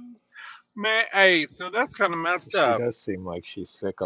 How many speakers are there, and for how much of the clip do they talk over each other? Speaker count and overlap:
2, about 8%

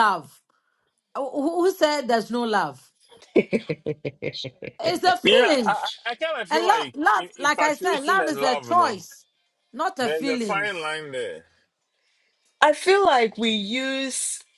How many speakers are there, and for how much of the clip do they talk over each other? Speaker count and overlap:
3, about 25%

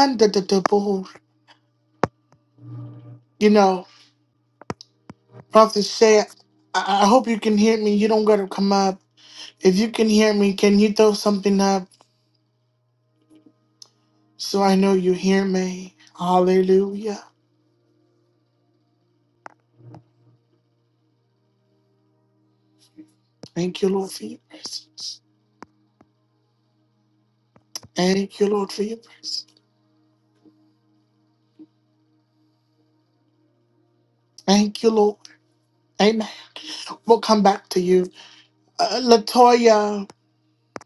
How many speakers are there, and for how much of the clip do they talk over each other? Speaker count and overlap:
1, no overlap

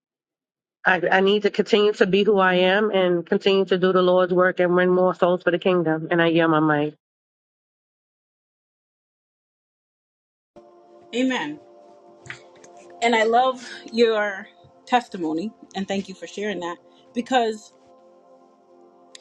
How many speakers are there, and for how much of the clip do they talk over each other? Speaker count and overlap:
2, no overlap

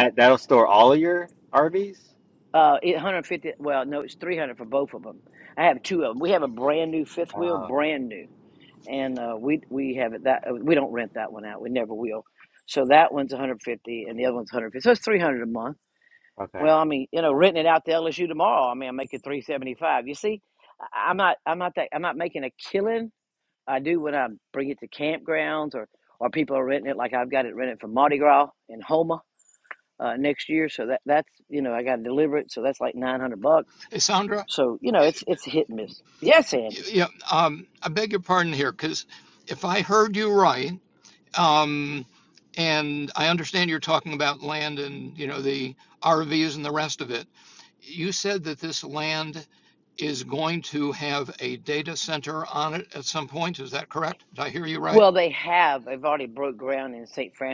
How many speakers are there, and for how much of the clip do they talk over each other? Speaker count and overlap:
3, about 1%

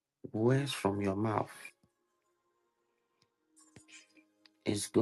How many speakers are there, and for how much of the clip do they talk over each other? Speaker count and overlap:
1, no overlap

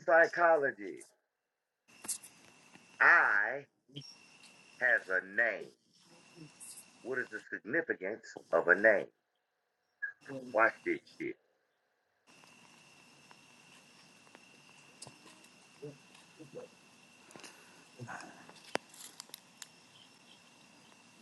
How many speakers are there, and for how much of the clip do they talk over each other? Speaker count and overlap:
1, no overlap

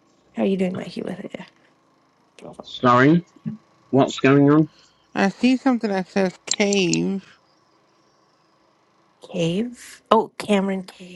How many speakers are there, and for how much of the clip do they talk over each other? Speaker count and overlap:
3, no overlap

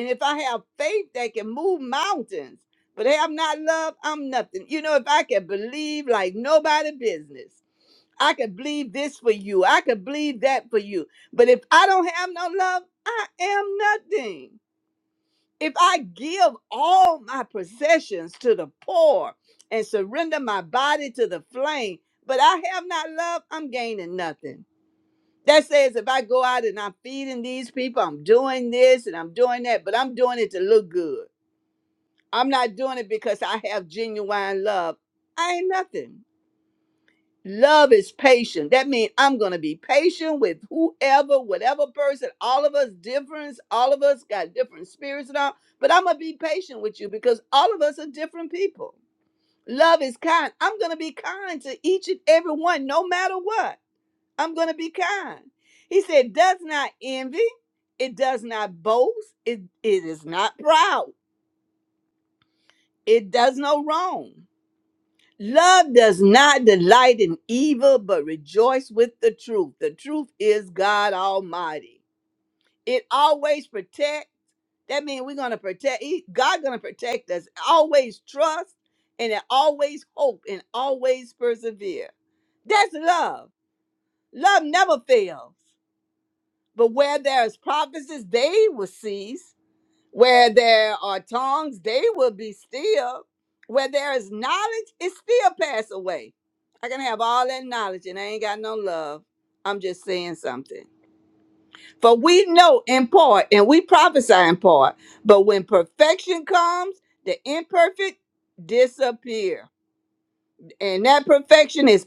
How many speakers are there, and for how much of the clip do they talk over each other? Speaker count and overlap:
1, no overlap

